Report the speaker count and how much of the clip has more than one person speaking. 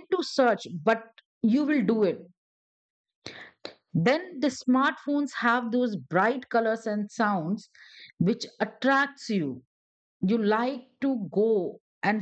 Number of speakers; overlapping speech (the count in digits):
1, no overlap